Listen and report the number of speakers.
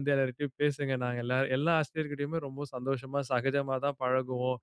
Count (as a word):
one